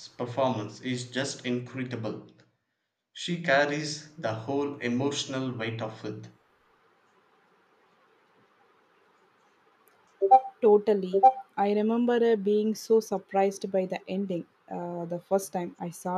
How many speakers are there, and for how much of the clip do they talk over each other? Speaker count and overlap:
two, no overlap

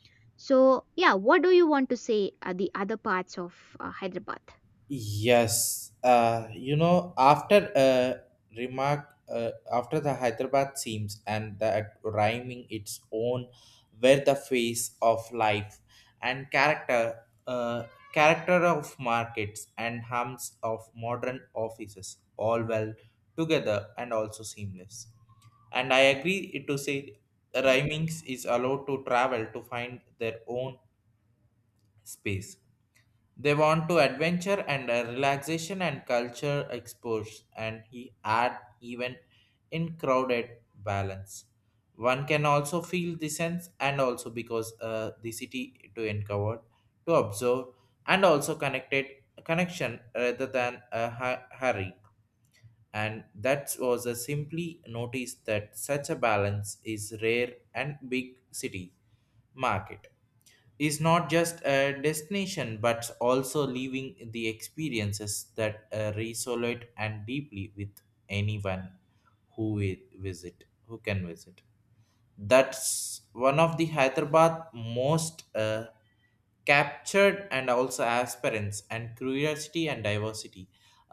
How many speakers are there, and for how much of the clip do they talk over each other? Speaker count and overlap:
two, no overlap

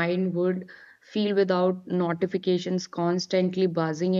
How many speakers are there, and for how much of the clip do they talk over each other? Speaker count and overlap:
one, no overlap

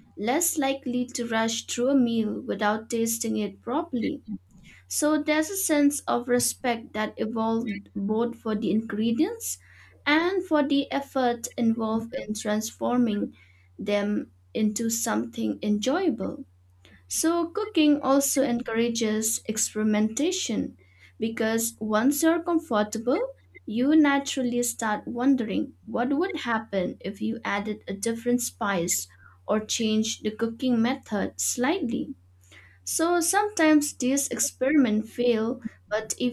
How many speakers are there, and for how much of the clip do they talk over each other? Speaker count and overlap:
one, no overlap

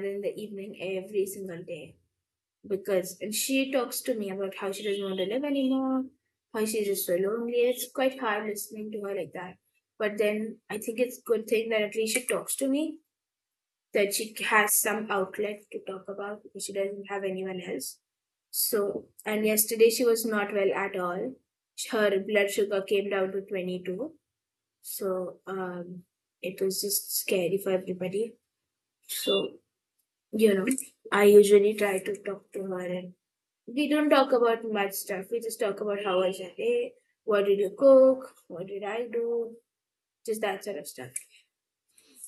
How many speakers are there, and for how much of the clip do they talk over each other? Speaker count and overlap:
one, no overlap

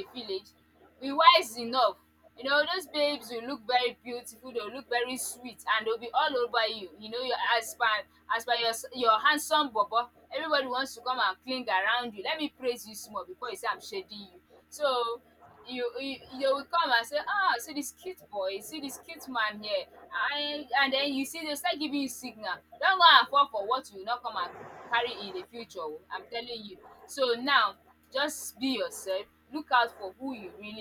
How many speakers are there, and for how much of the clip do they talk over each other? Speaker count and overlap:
one, no overlap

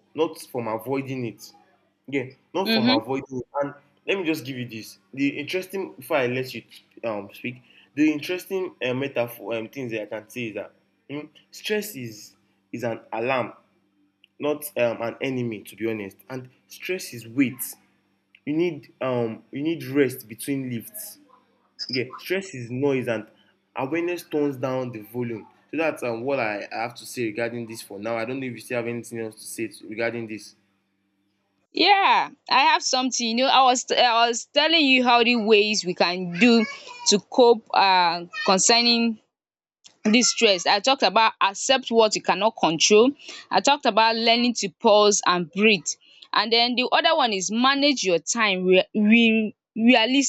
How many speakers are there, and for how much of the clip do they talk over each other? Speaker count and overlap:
two, about 1%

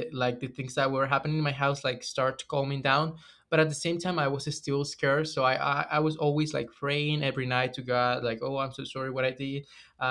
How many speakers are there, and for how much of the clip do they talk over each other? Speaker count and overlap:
one, no overlap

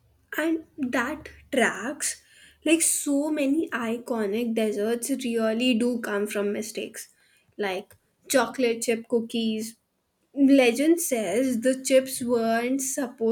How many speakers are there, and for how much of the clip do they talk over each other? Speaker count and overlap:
one, no overlap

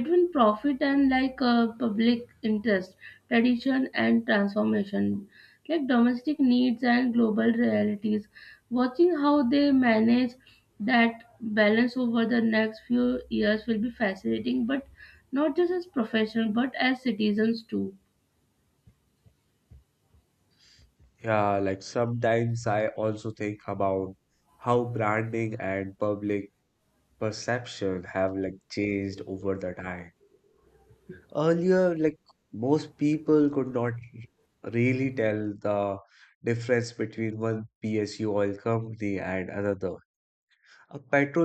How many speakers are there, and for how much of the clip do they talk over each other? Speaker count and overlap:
two, no overlap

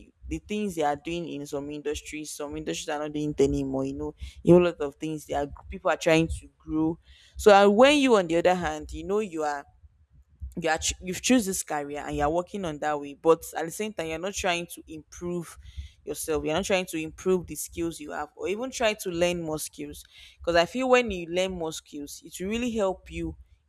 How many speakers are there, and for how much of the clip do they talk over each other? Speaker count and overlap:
one, no overlap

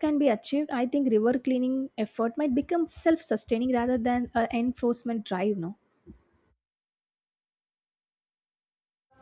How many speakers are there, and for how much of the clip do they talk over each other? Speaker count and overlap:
one, no overlap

